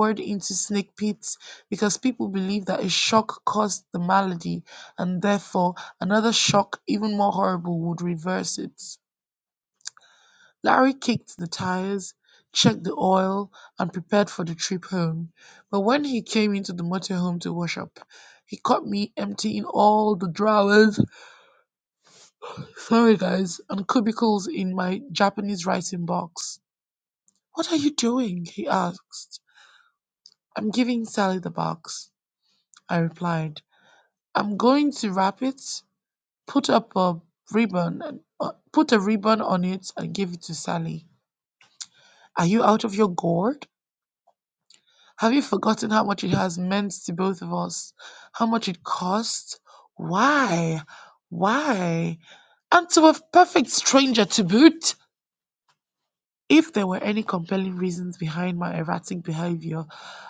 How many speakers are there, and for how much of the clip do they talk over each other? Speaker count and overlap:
one, no overlap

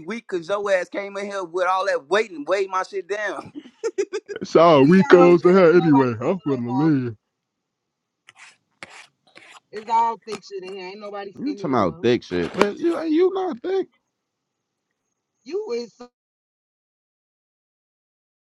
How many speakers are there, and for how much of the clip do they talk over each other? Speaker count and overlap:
three, about 15%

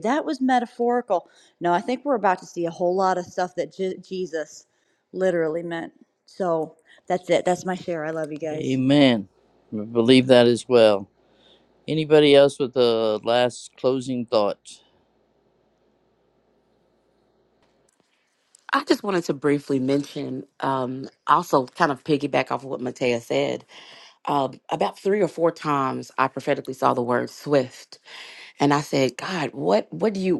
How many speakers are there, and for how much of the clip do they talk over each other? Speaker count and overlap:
three, under 1%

